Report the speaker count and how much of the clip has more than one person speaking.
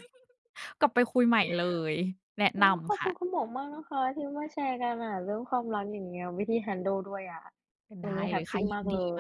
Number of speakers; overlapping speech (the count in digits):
2, about 17%